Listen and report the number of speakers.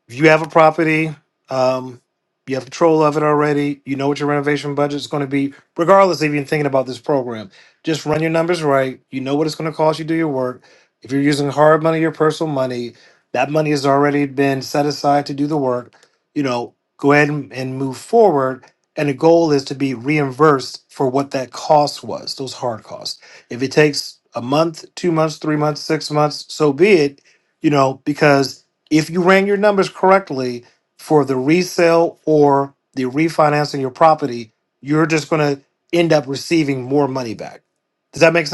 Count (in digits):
1